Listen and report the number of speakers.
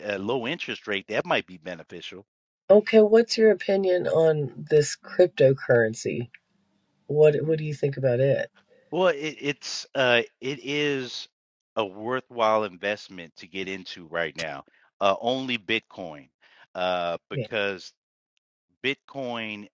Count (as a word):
two